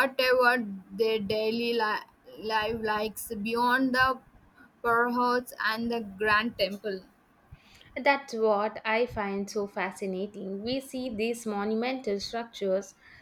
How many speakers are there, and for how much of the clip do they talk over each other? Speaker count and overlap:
2, no overlap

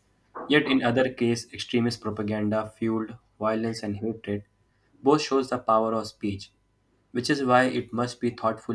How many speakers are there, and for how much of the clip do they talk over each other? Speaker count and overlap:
1, no overlap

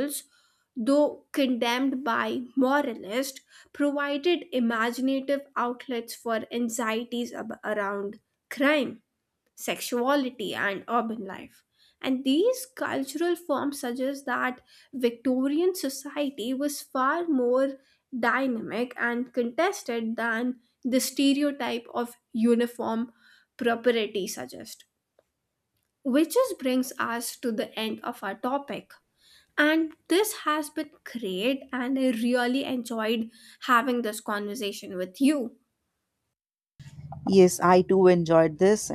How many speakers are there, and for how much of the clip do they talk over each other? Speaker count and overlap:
2, no overlap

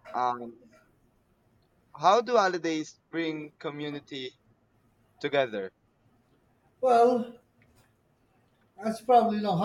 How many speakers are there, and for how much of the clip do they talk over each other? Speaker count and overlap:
2, no overlap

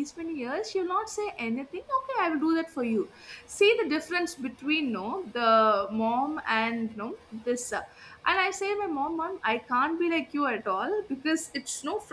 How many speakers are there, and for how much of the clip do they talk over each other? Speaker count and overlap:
1, no overlap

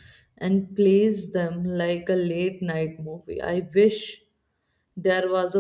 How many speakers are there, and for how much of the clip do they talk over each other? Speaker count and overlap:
1, no overlap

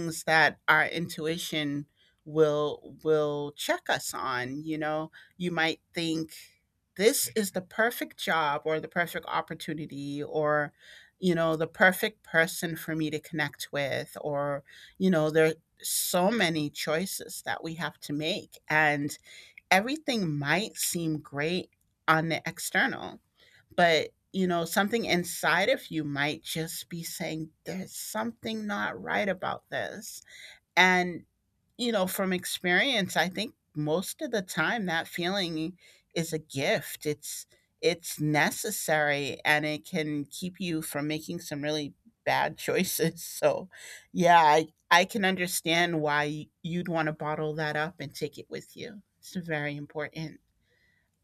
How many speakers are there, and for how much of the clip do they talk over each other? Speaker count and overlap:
1, no overlap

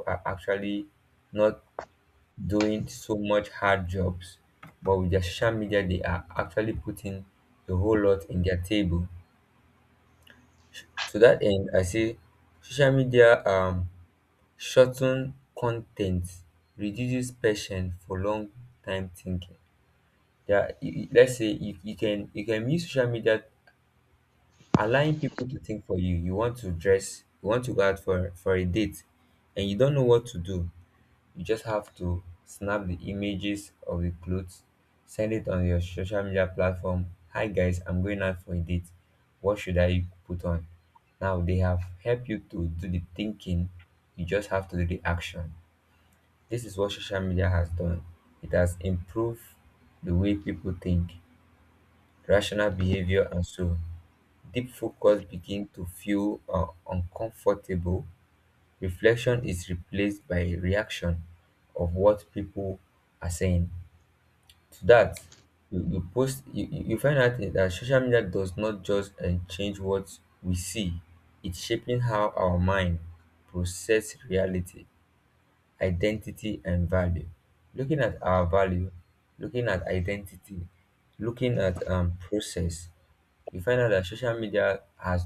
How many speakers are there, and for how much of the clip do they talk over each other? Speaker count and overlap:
1, no overlap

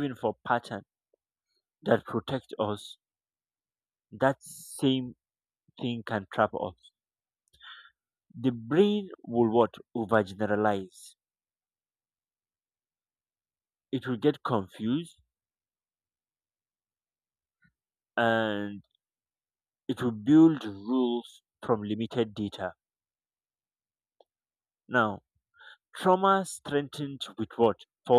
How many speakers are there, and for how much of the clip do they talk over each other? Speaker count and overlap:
1, no overlap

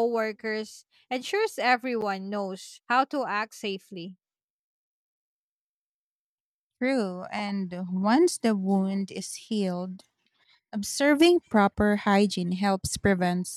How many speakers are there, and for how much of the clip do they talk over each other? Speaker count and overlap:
2, no overlap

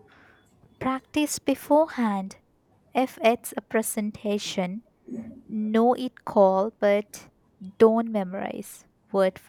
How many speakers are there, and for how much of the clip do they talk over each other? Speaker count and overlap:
1, no overlap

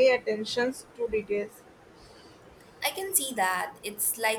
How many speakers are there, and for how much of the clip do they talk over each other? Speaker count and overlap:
2, no overlap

